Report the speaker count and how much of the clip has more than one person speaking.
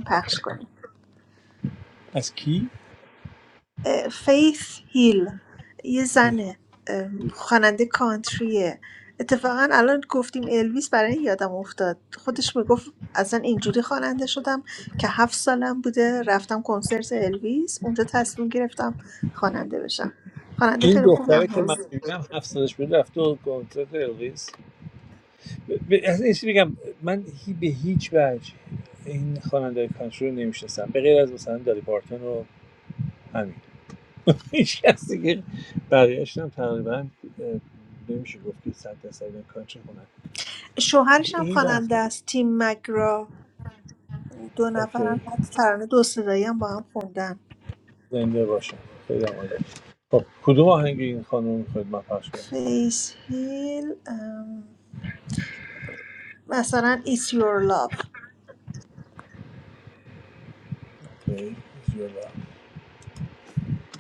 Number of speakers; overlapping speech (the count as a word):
two, about 4%